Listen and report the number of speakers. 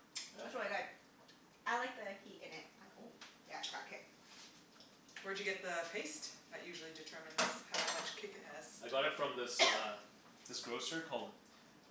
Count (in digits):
3